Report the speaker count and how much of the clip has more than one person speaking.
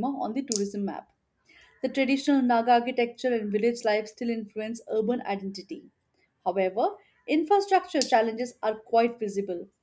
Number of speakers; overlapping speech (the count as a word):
one, no overlap